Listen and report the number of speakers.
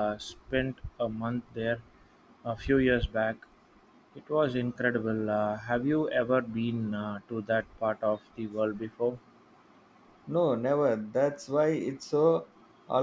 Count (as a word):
two